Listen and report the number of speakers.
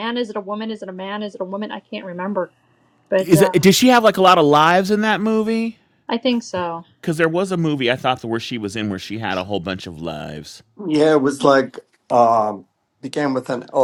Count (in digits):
3